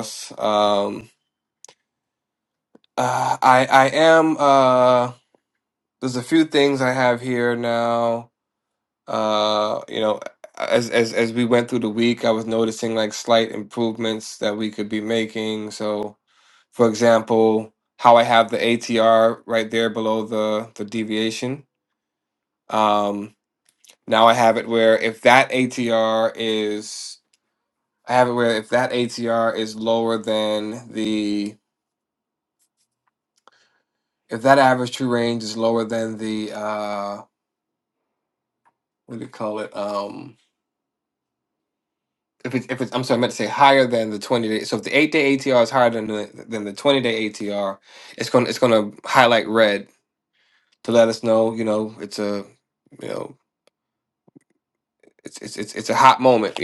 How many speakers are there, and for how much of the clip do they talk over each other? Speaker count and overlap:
1, no overlap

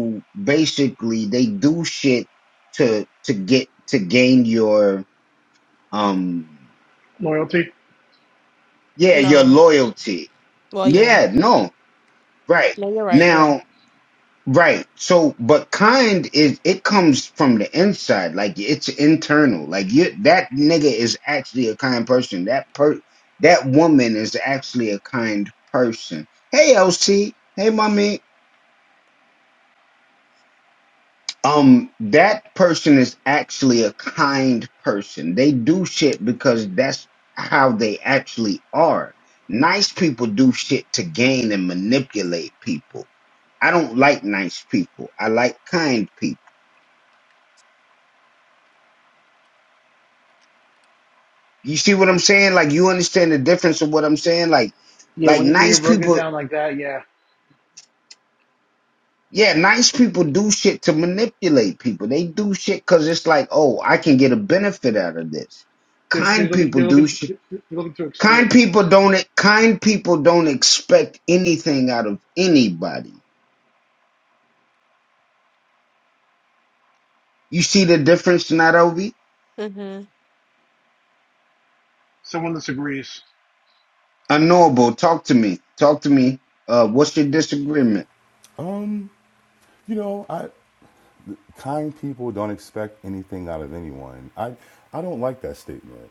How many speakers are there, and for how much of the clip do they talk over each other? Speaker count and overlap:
4, about 4%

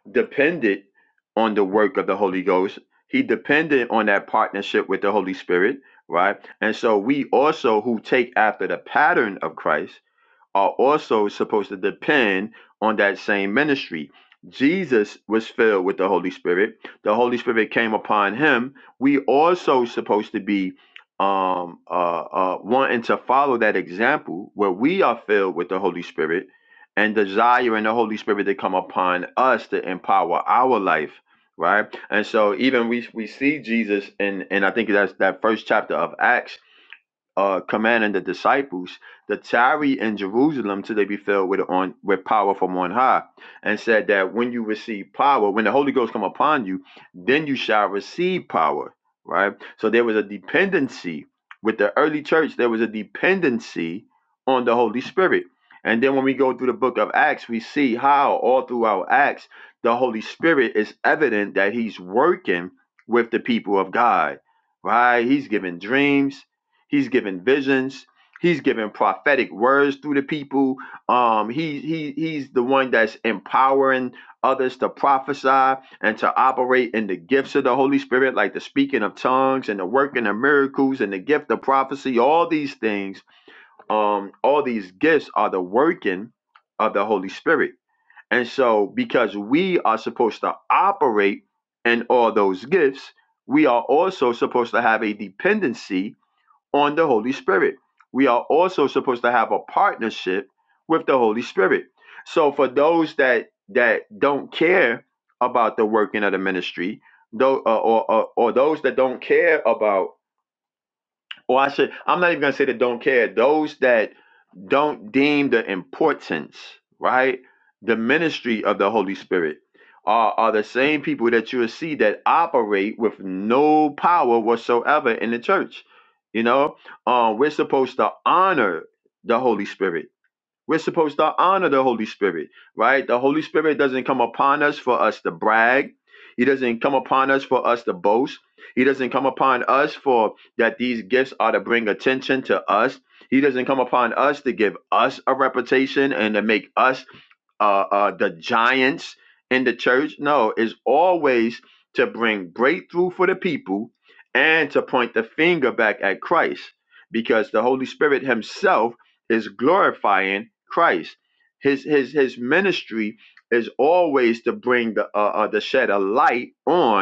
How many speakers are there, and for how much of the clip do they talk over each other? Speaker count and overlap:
1, no overlap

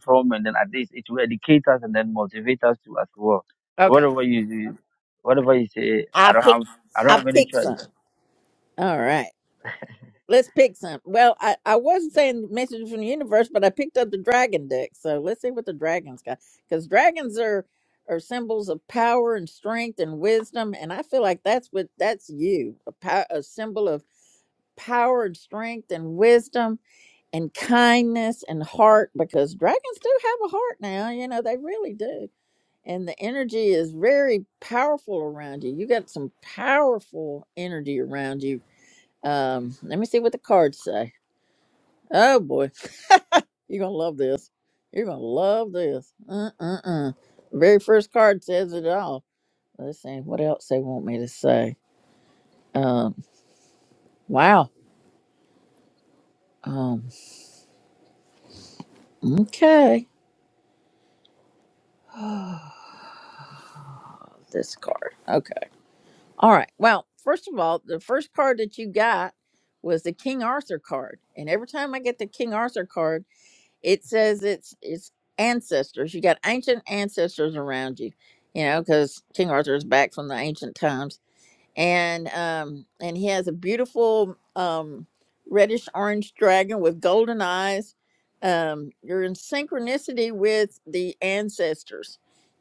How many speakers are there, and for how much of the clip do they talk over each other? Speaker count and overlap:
2, about 1%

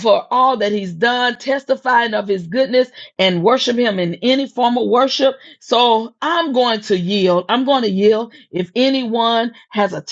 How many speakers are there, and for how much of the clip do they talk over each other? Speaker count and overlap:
1, no overlap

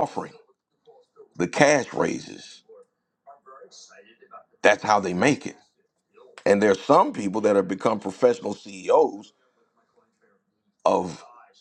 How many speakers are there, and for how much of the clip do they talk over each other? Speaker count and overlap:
1, no overlap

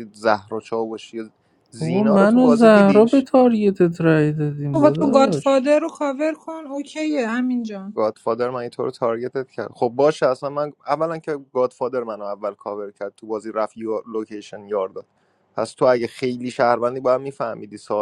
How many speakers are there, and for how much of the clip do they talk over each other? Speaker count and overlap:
3, about 13%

